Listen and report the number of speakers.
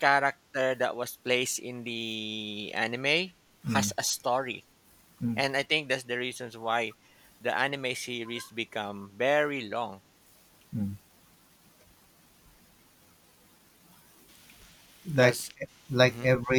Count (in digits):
2